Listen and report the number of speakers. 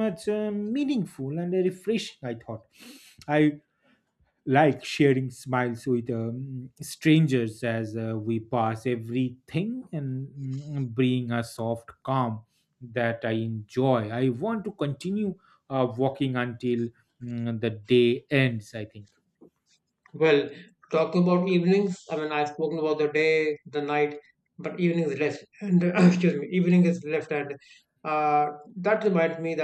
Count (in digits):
2